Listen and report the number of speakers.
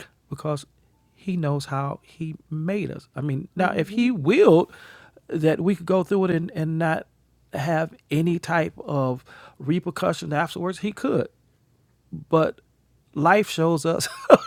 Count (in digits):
1